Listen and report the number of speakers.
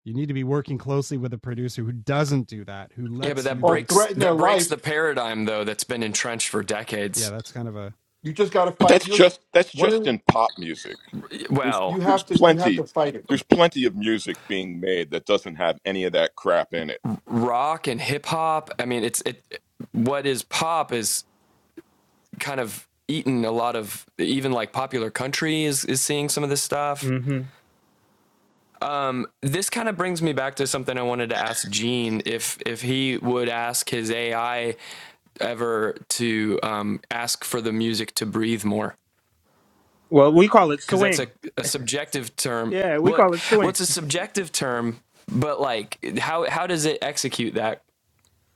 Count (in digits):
5